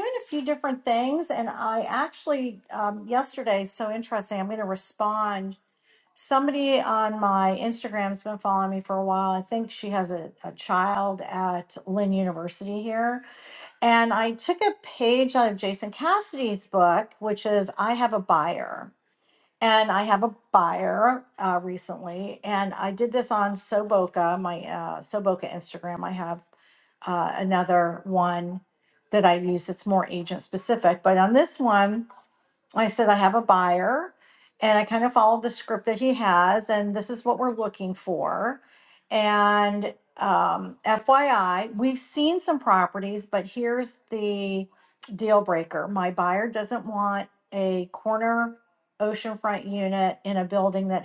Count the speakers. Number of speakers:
one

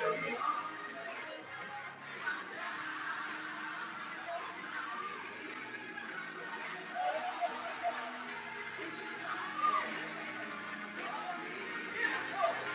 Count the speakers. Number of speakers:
zero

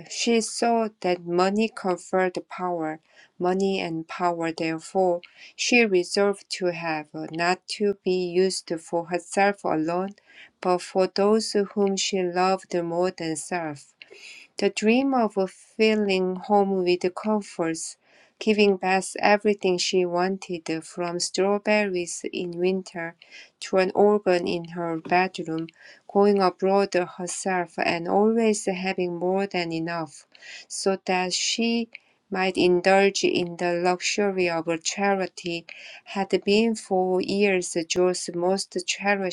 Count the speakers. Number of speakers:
one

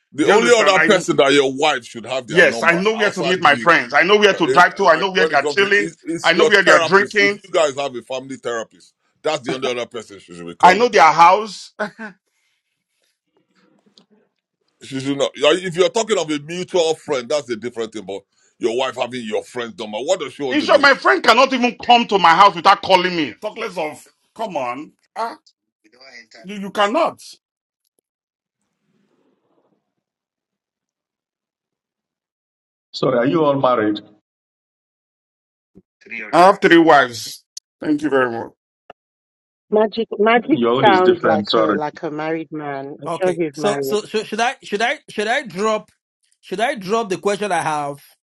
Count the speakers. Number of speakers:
five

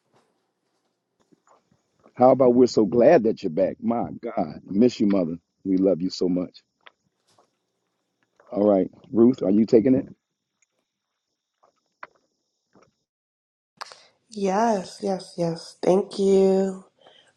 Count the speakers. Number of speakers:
two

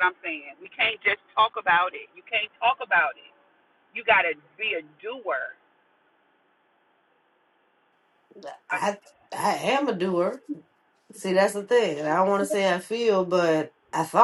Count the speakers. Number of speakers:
two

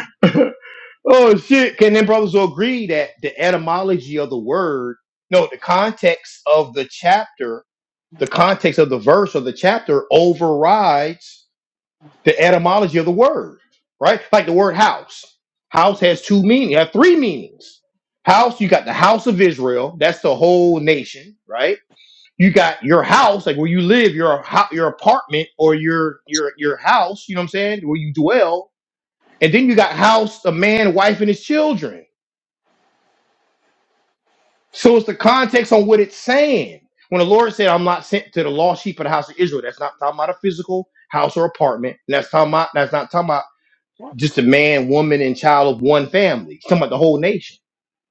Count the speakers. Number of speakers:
one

